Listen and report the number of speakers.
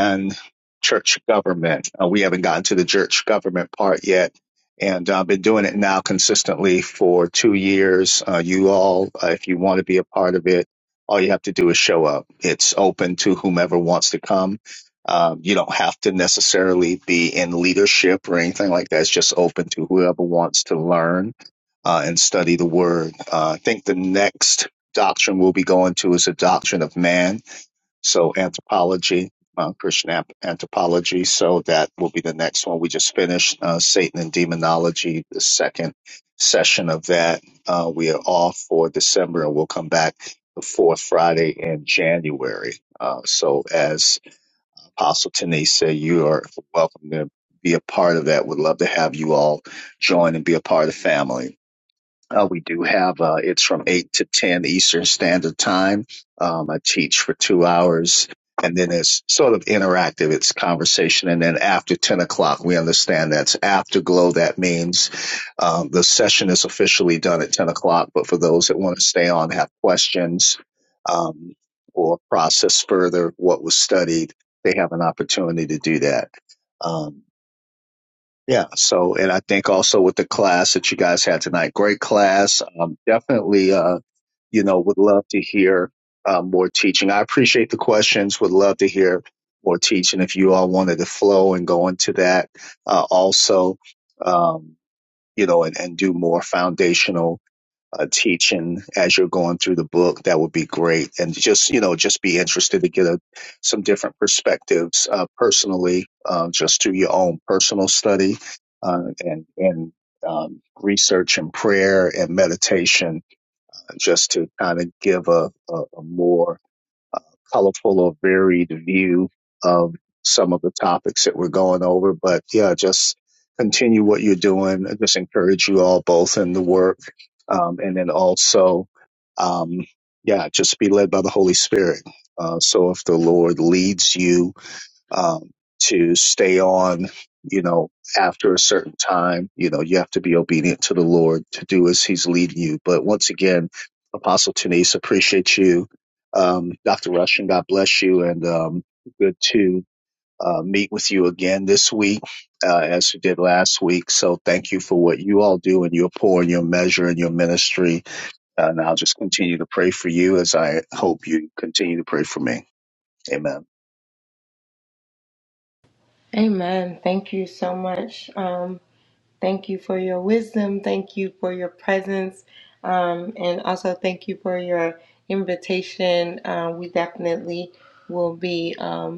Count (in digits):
2